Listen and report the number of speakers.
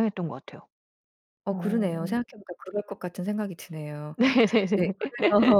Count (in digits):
2